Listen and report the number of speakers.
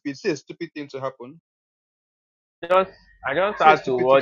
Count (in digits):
2